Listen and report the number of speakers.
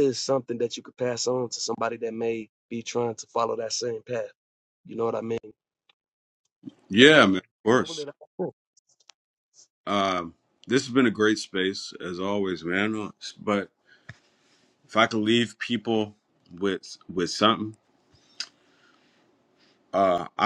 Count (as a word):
two